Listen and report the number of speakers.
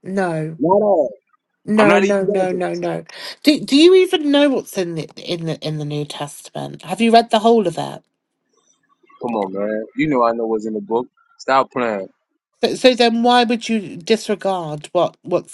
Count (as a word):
two